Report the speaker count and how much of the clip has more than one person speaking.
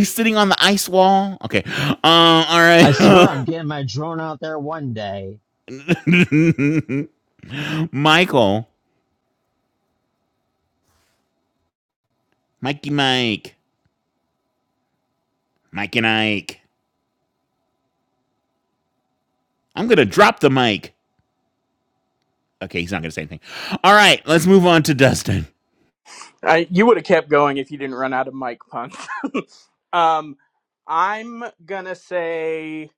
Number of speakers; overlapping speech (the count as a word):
three, no overlap